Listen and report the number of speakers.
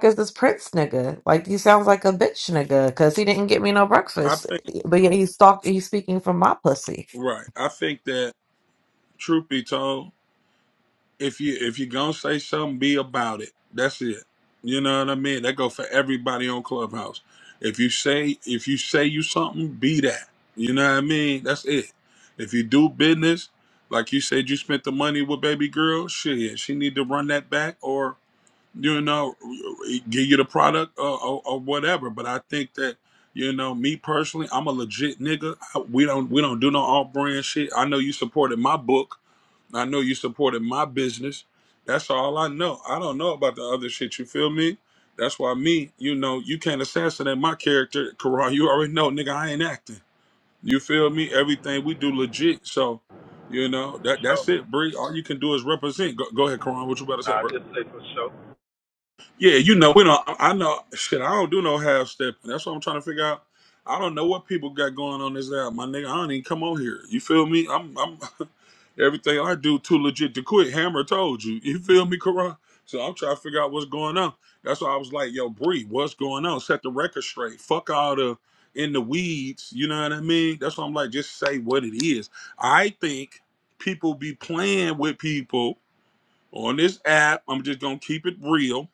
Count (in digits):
3